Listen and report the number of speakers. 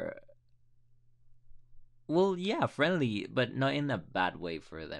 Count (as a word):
one